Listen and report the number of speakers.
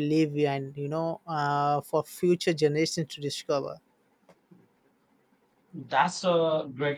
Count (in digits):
2